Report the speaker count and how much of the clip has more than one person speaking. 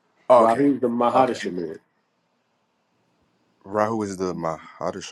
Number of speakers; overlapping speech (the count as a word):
two, about 12%